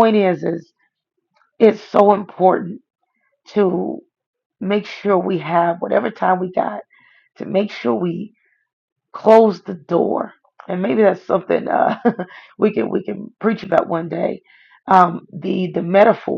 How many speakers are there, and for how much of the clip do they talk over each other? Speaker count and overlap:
one, no overlap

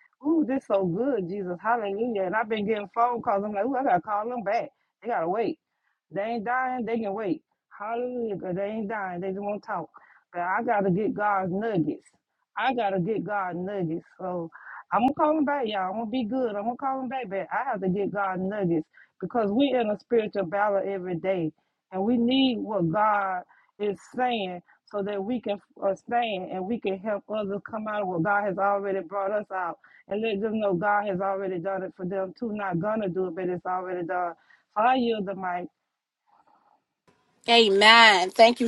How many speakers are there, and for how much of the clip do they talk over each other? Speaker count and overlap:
two, no overlap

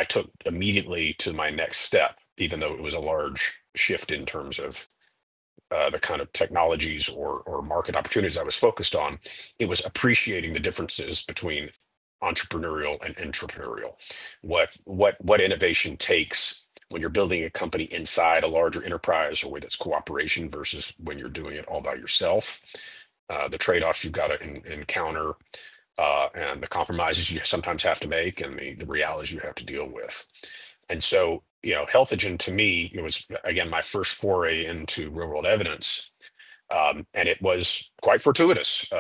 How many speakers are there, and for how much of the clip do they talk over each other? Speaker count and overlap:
one, no overlap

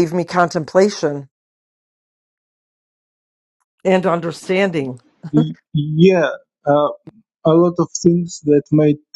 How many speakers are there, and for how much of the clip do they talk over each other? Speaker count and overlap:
two, no overlap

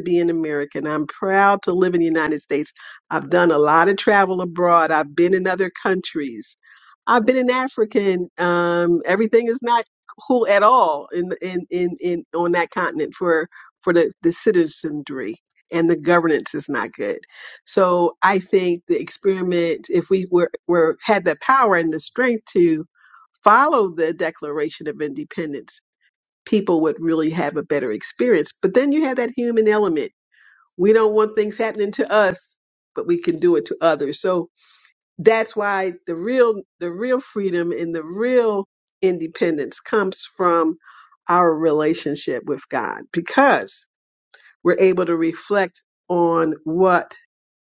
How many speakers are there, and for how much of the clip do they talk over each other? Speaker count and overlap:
one, no overlap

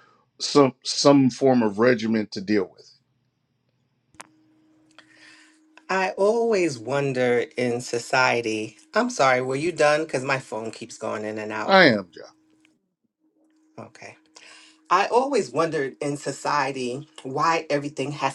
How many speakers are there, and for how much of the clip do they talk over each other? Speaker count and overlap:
two, under 1%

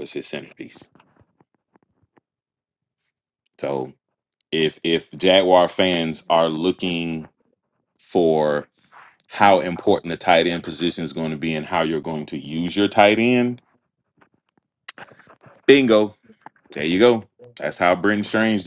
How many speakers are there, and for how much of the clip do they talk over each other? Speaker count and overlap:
one, no overlap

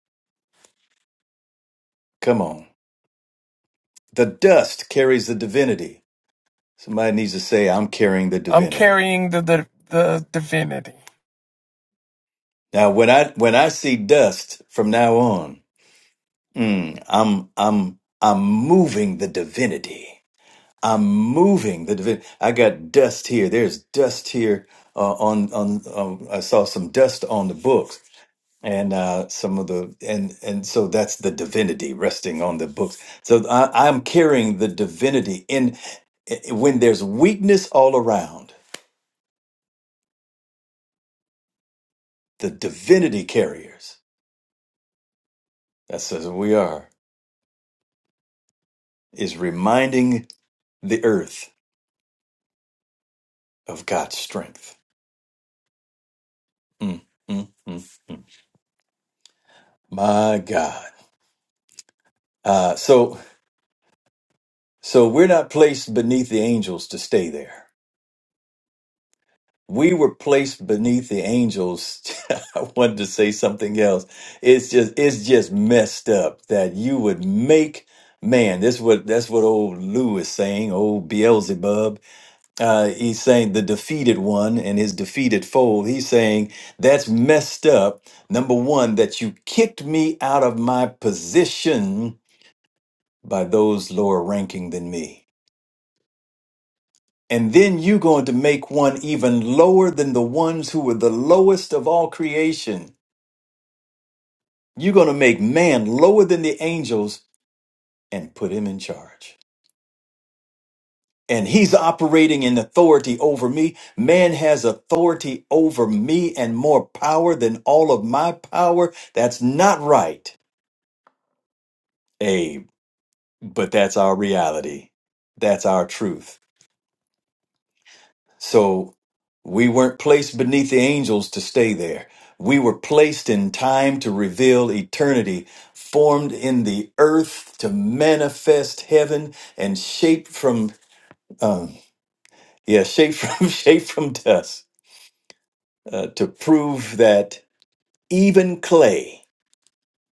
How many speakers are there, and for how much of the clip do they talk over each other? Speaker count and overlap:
two, under 1%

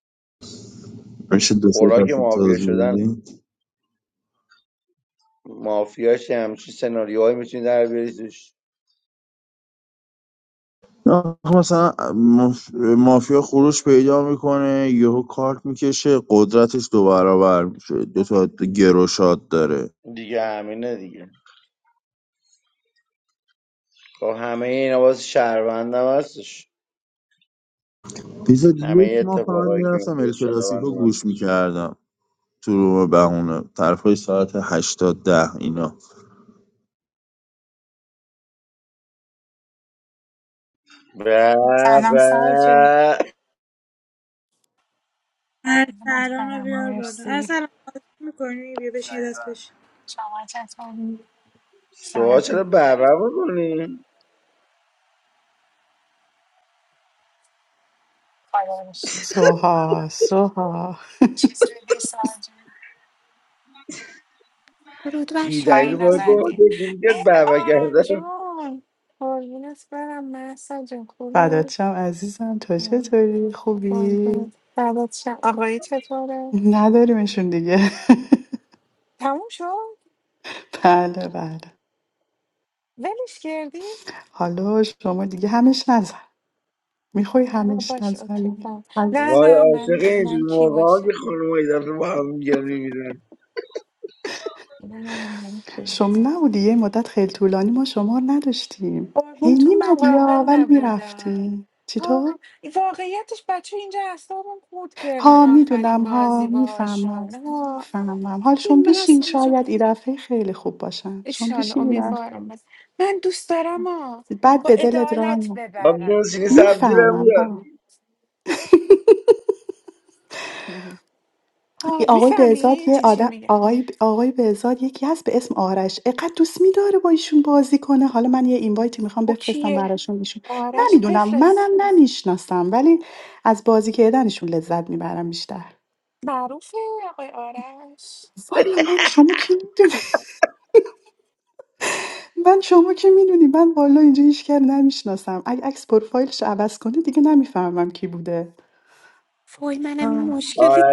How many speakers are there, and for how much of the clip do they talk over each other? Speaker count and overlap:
six, about 17%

